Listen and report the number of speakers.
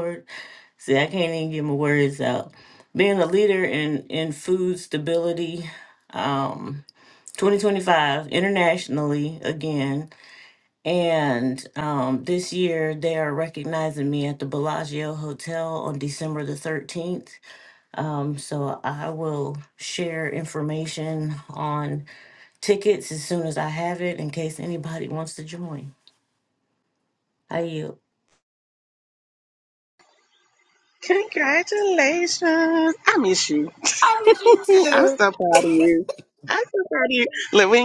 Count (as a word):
two